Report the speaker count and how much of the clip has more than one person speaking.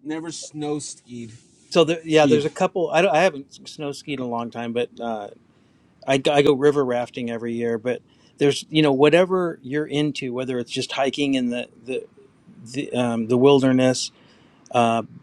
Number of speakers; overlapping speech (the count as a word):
two, about 2%